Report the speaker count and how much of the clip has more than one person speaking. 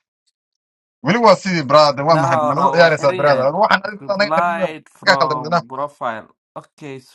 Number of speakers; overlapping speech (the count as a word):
two, about 37%